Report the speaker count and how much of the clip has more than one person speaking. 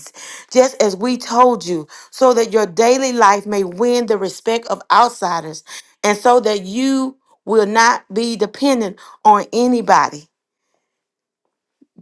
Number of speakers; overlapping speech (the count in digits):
1, no overlap